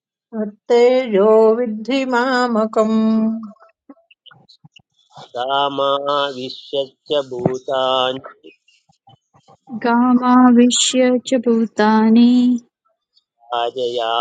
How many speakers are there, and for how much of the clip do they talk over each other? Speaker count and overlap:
3, no overlap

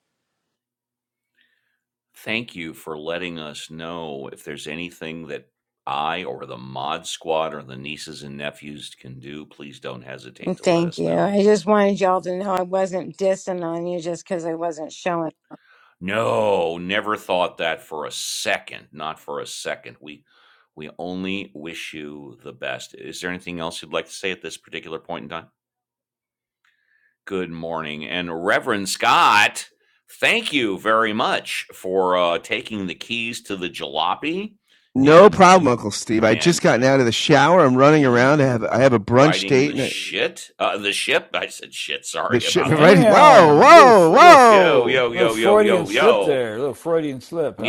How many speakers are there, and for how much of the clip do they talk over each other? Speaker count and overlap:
4, about 15%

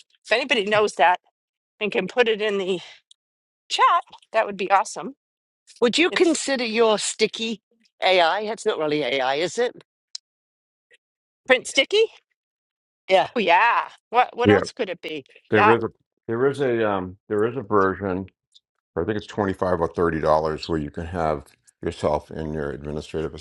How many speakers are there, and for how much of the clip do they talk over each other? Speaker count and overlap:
3, about 3%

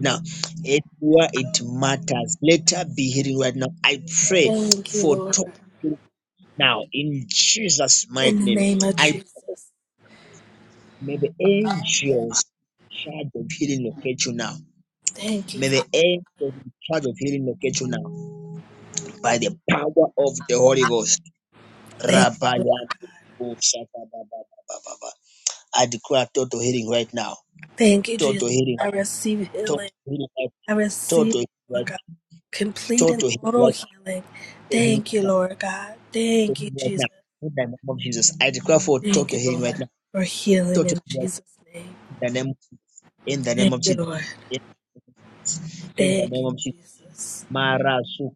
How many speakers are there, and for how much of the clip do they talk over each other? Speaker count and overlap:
2, about 16%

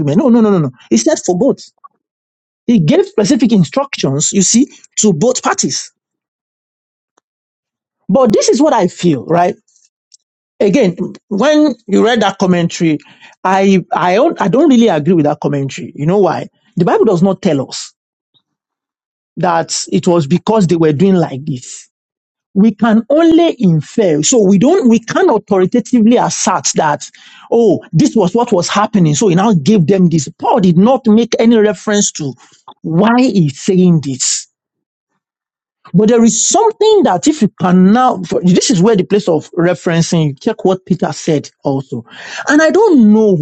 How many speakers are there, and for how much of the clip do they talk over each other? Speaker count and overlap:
1, no overlap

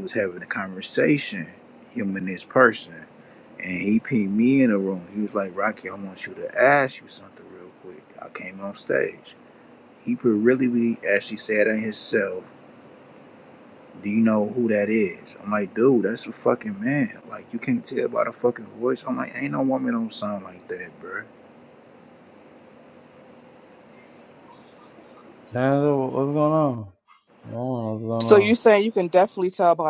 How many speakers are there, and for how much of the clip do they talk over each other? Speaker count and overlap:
3, about 1%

